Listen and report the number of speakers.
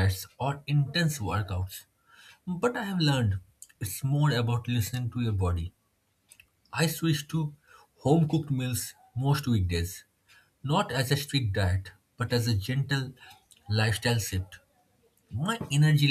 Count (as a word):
one